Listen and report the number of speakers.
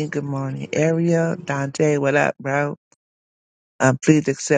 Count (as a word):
one